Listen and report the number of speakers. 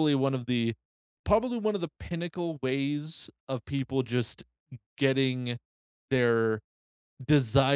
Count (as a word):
one